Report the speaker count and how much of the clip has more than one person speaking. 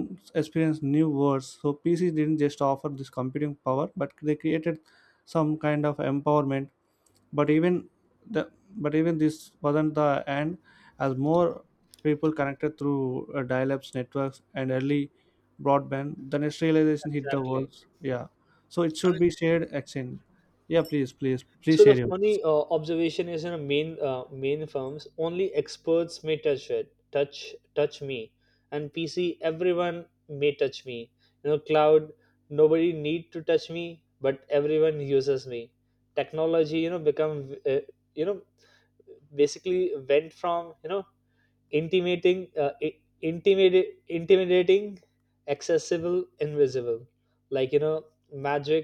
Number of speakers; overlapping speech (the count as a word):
two, about 3%